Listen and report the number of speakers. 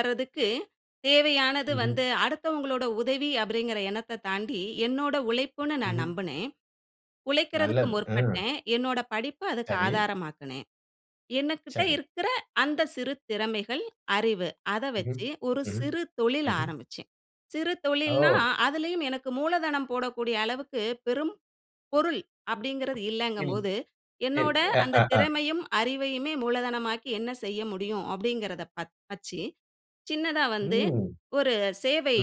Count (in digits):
2